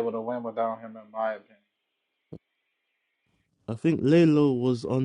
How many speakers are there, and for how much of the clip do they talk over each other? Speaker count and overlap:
two, no overlap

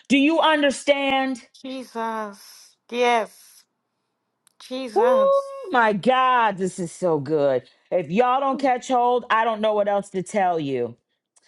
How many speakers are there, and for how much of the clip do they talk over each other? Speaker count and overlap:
two, about 3%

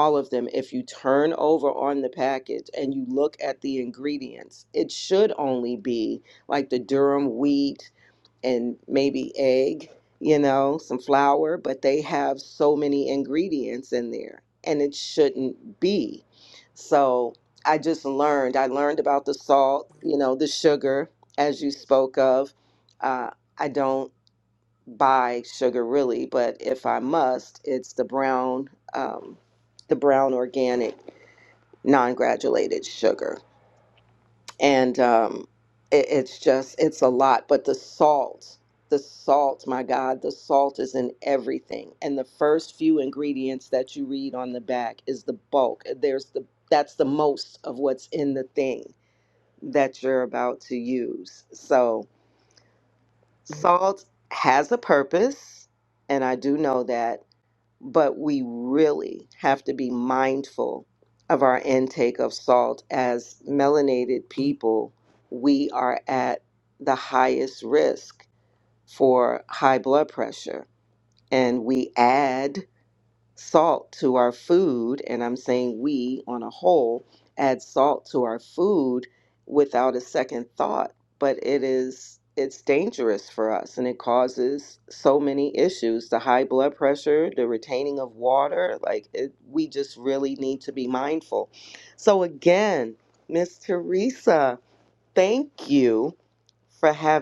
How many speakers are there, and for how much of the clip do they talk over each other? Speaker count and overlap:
one, no overlap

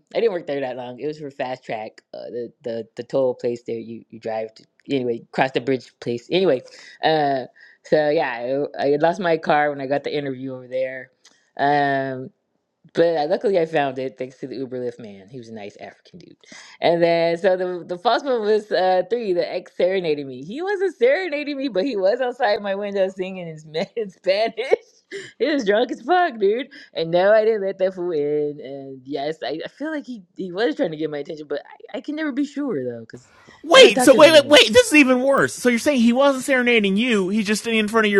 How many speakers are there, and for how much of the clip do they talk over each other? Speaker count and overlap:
two, about 2%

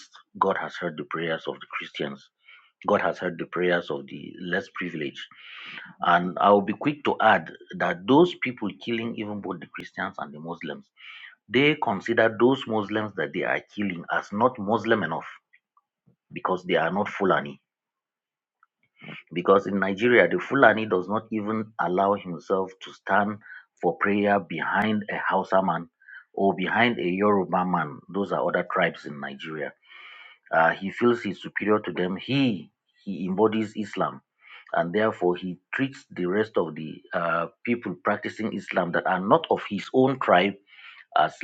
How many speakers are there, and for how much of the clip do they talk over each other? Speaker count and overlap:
one, no overlap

